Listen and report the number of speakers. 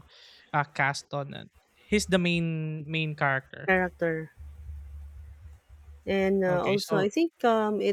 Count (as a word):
two